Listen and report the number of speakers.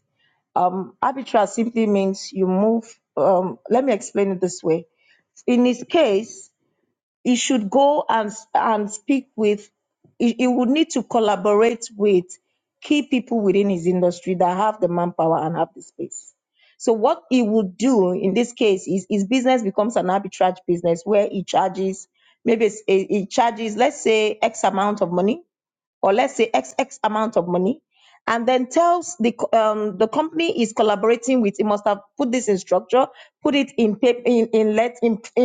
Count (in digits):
1